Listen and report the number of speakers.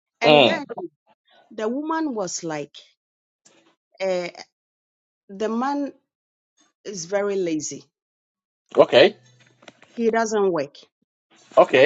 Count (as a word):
two